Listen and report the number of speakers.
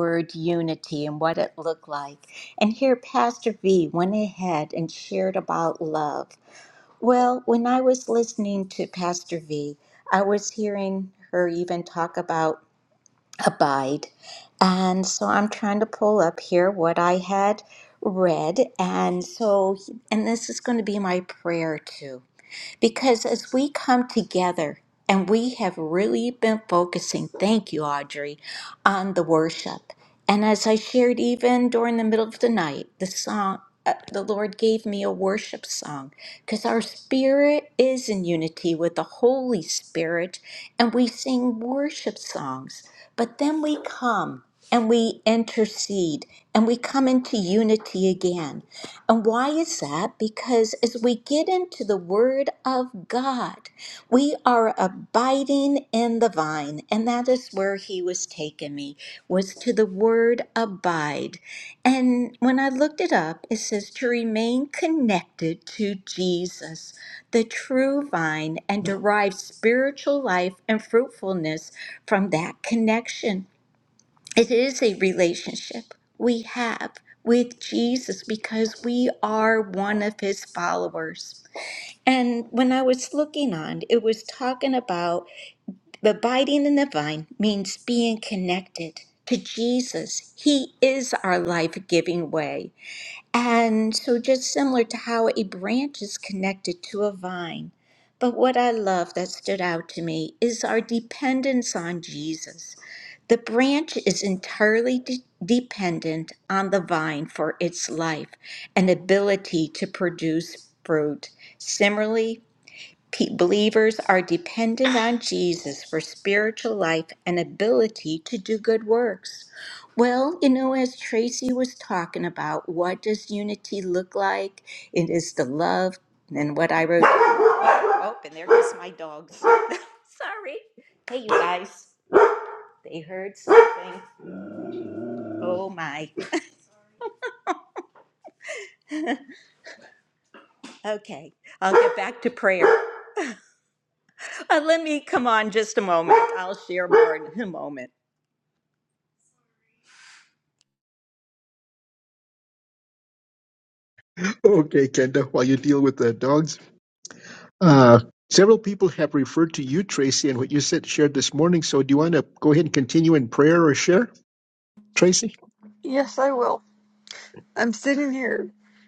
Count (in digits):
3